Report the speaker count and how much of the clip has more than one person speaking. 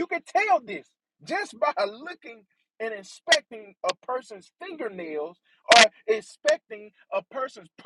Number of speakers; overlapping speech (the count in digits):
1, no overlap